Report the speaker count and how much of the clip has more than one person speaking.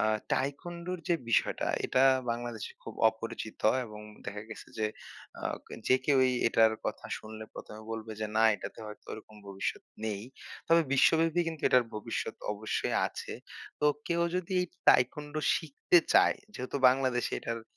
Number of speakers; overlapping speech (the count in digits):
1, no overlap